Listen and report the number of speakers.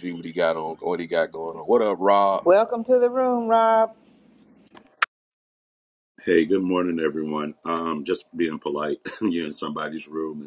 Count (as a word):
three